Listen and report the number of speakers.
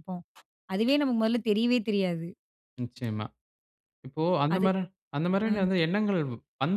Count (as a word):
two